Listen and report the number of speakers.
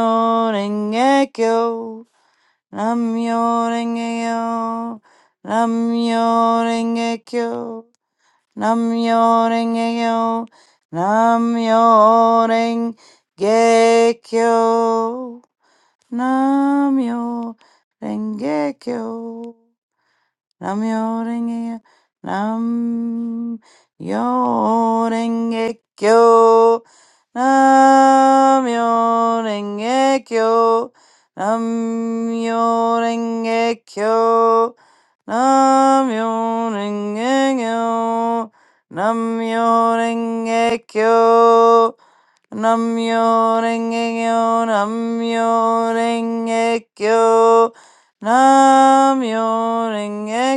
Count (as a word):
one